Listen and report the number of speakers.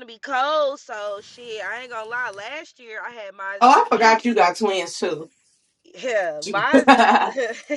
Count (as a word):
two